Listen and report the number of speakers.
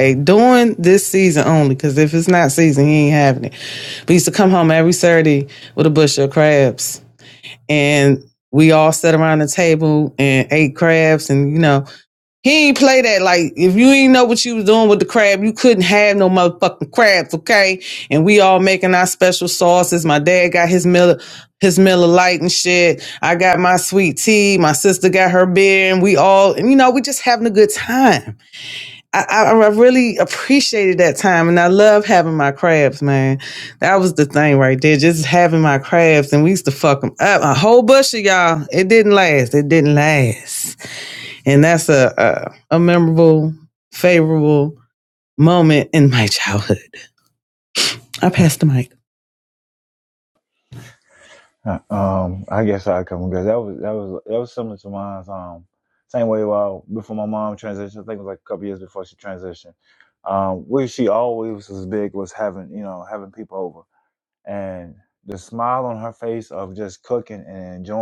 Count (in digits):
2